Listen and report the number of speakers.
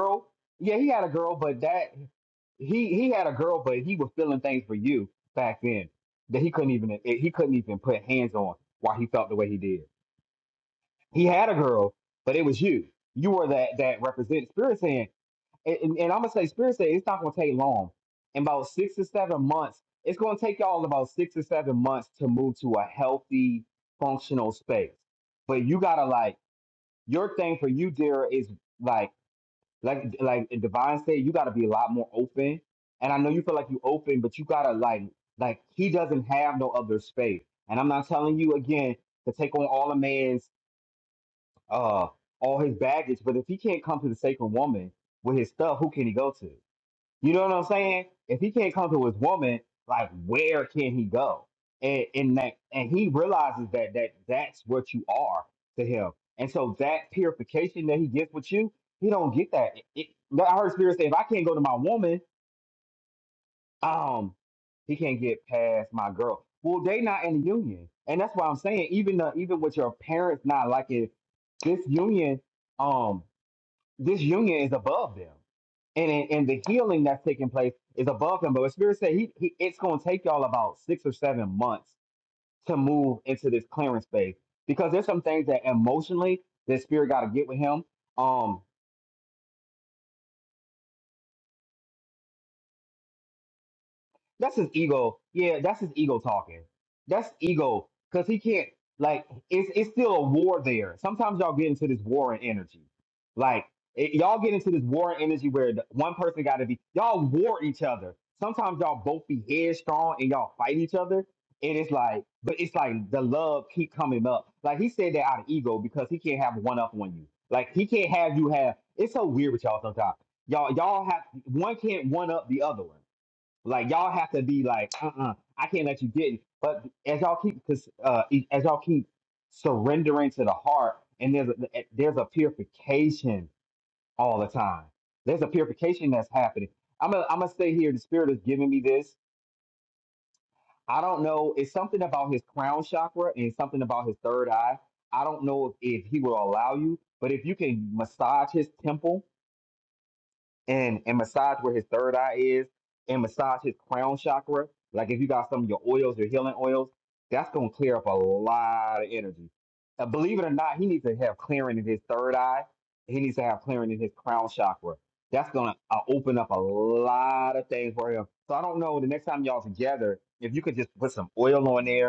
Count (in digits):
1